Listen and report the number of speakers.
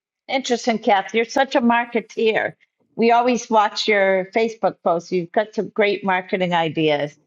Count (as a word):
one